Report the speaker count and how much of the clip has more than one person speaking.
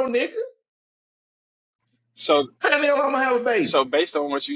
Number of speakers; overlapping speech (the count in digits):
2, about 2%